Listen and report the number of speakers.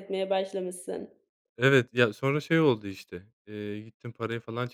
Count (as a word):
two